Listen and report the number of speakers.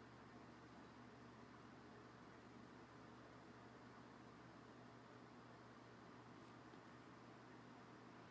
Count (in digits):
0